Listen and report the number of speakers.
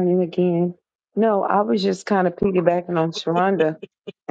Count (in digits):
1